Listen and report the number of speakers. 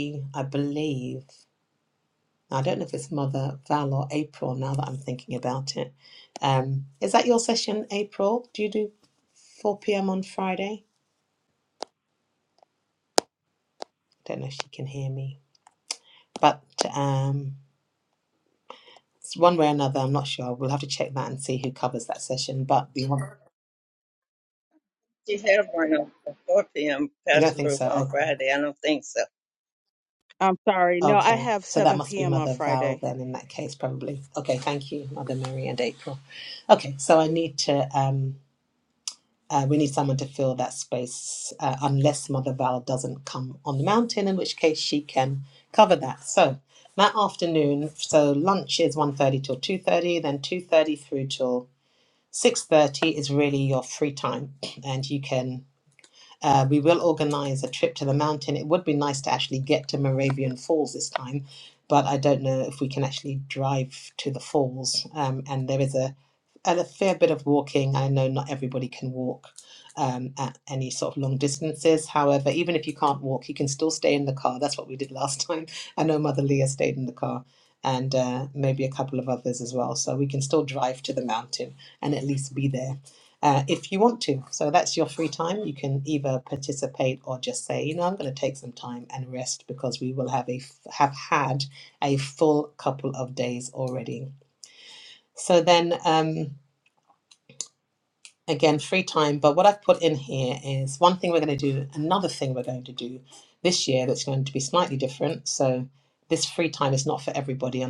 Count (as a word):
three